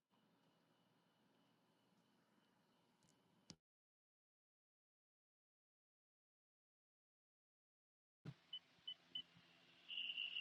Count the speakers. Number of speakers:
zero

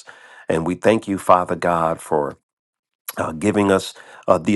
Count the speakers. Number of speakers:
one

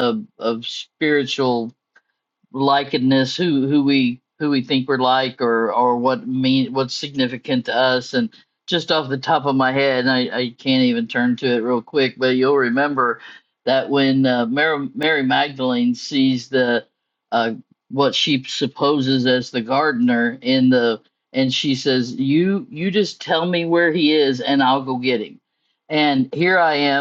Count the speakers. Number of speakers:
one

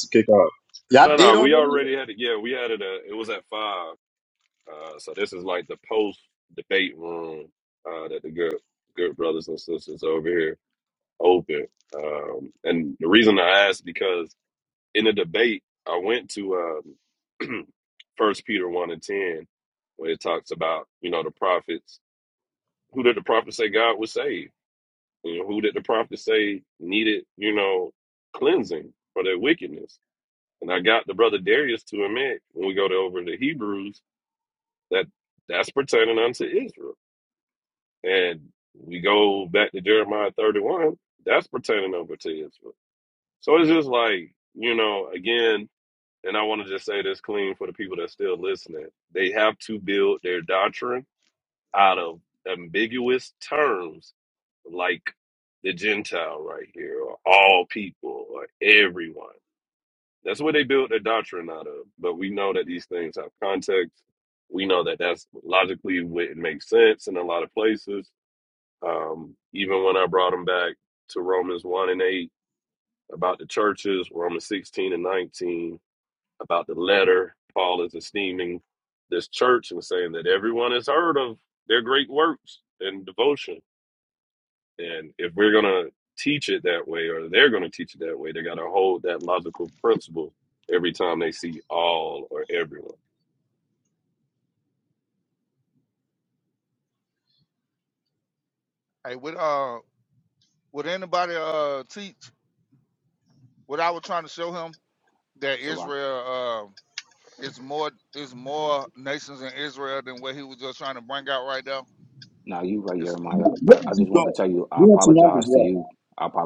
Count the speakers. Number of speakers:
four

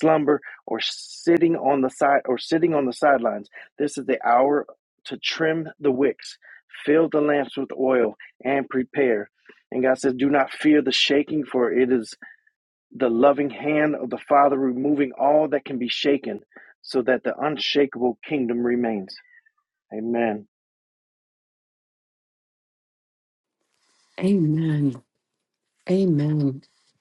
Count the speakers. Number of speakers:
two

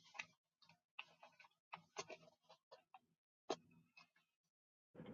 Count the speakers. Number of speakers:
zero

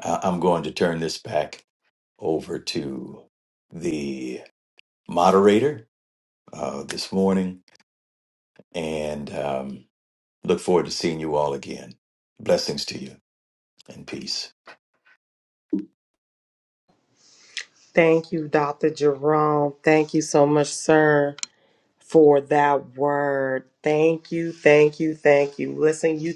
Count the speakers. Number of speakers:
two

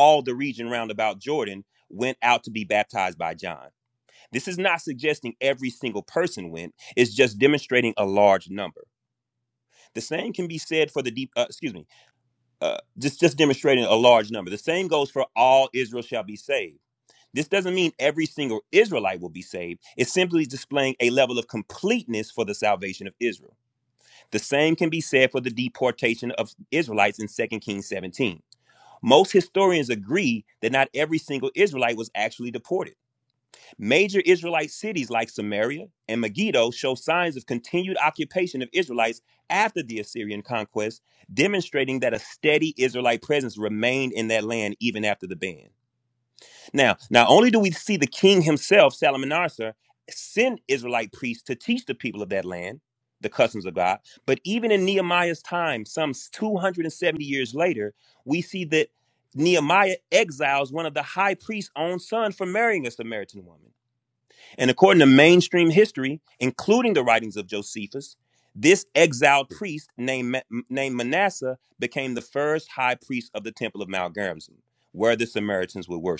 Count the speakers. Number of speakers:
one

